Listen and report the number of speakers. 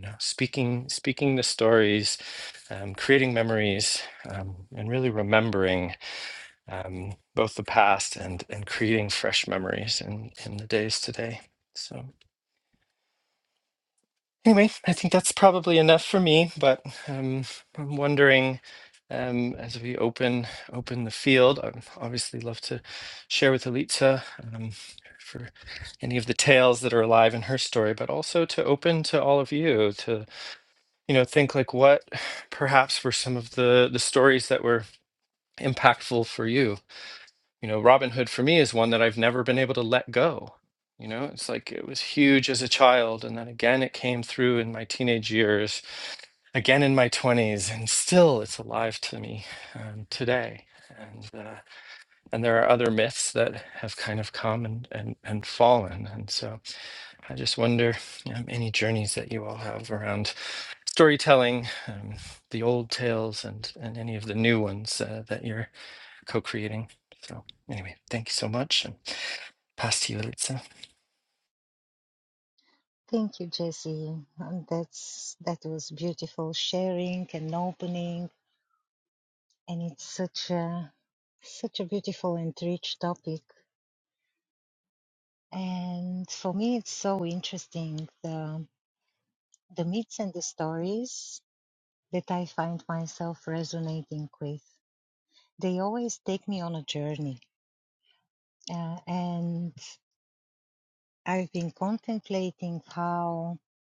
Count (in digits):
2